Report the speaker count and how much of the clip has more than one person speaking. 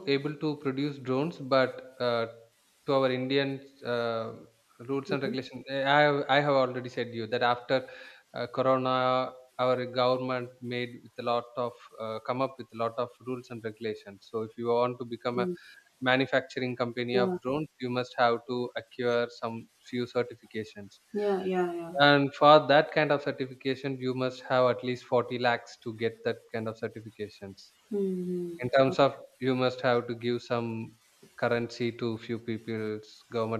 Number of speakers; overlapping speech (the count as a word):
two, about 3%